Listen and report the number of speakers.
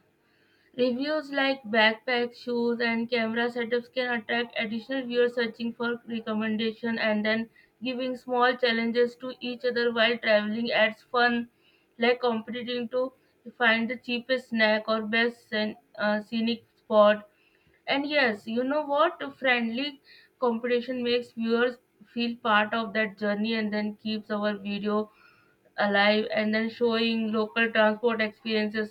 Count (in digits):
1